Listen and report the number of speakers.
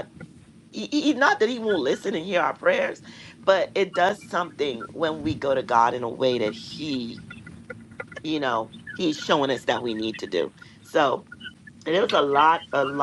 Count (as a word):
one